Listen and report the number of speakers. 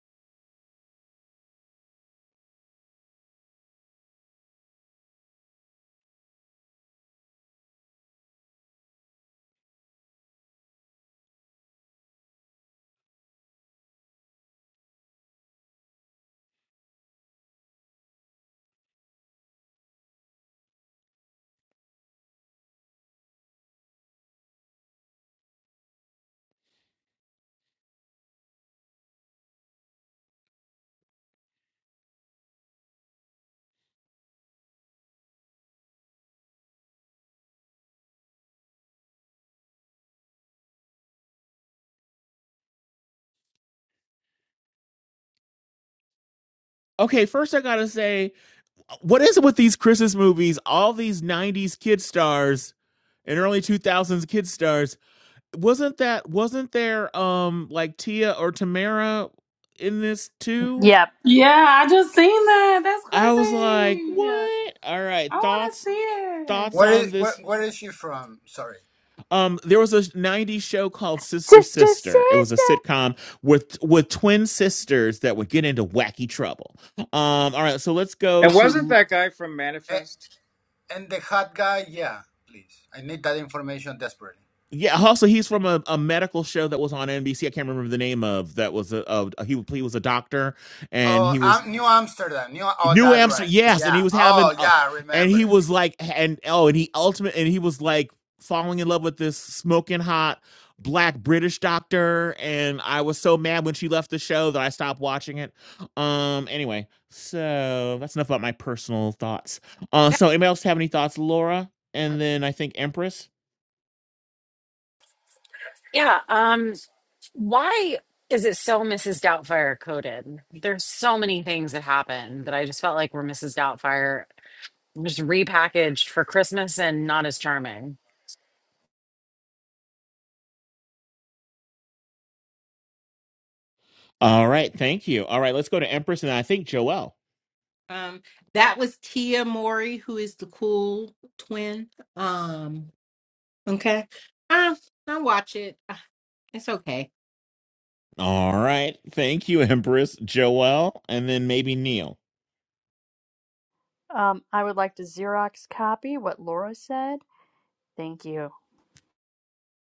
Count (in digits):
7